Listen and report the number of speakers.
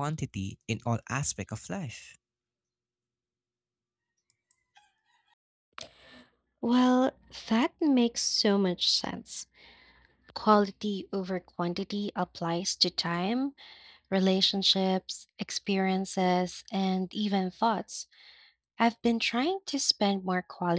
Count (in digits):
2